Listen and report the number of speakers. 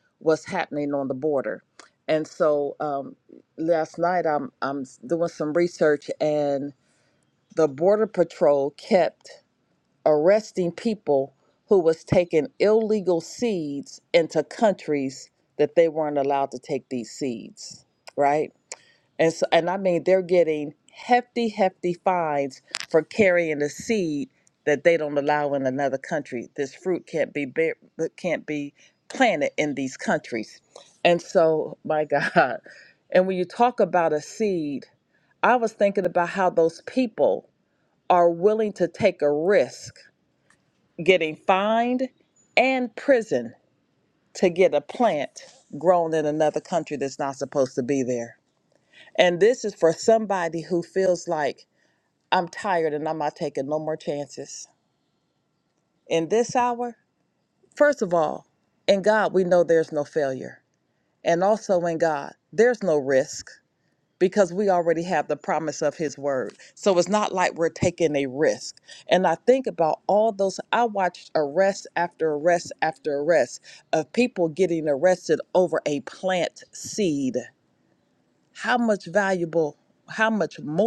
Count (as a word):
one